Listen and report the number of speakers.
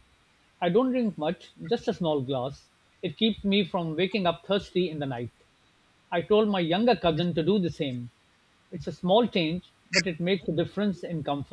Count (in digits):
1